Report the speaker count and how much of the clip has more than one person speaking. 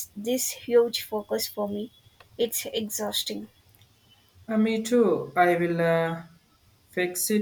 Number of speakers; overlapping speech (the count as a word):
two, no overlap